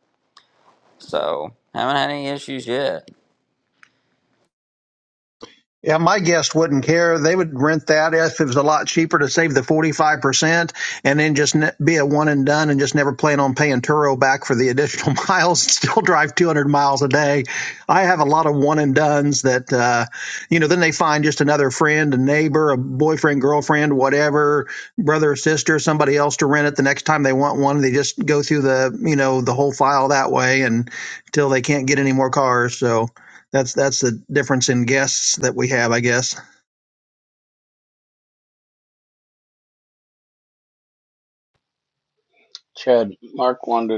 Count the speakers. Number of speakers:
3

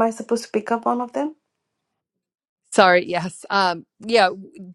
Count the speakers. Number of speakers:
2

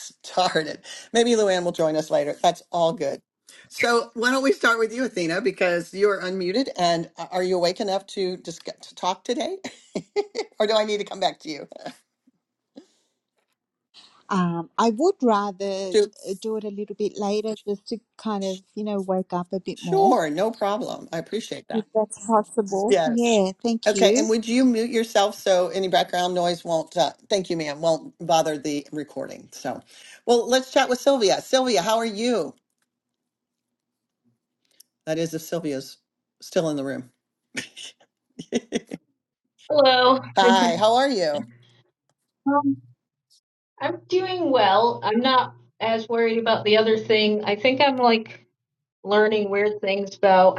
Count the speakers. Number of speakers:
3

